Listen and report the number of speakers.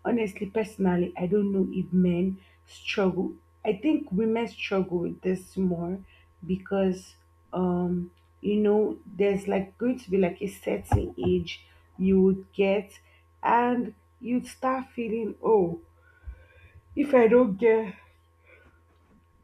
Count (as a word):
one